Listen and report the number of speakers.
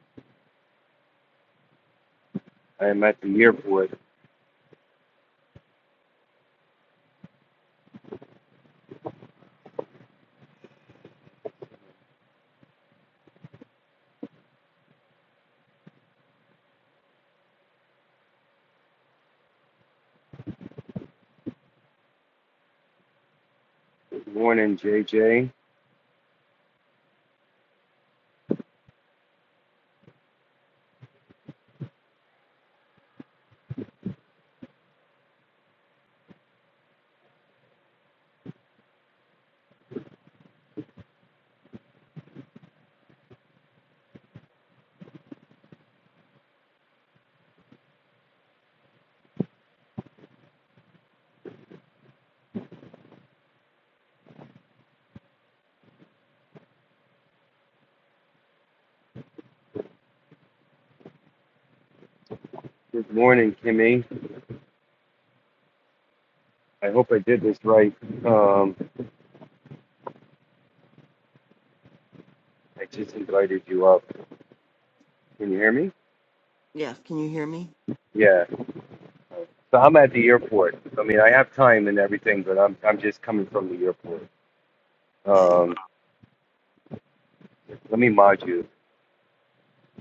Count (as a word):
two